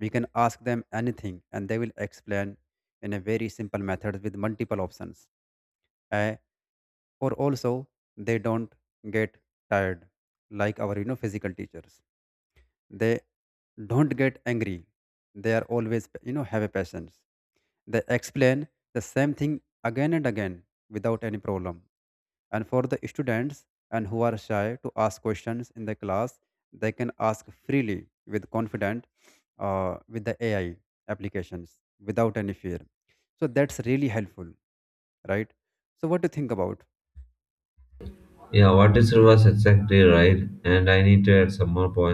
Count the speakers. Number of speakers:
two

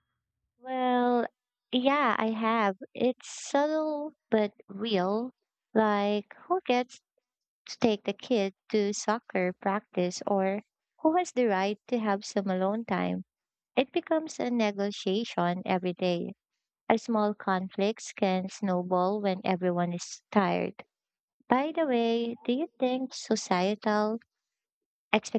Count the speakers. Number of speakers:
one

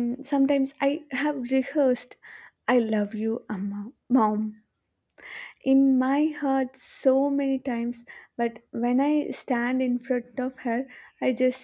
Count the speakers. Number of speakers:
one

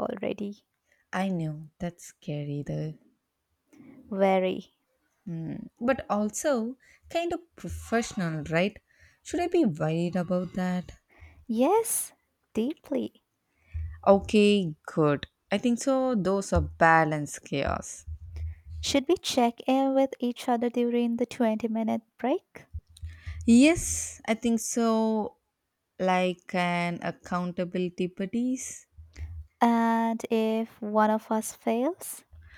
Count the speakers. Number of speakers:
two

